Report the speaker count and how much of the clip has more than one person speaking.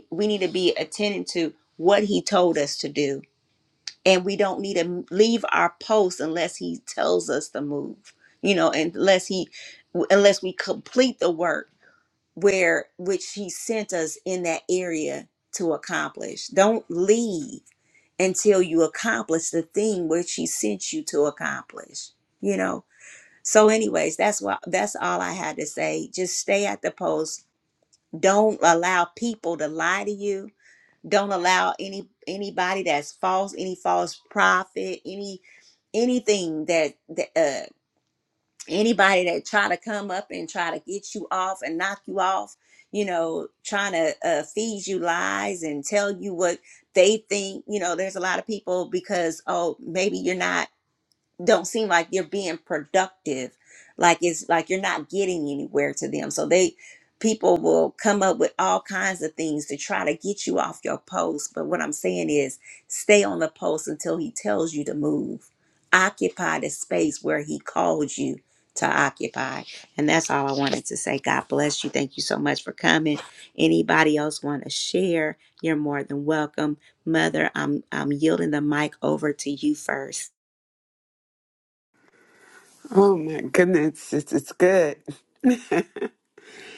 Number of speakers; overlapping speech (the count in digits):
2, no overlap